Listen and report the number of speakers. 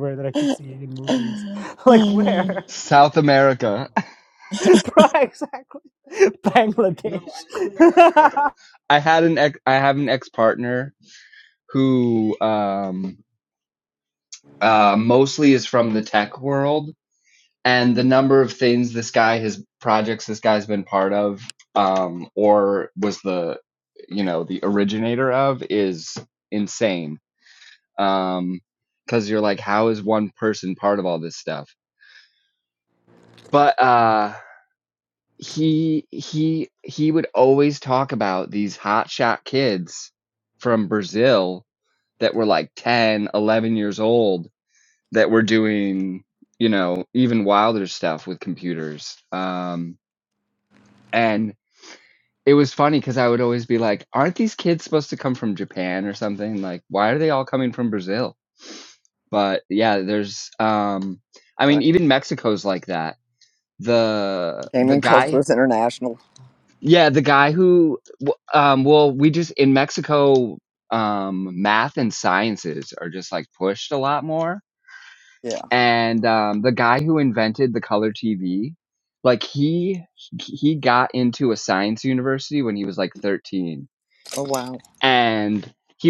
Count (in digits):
3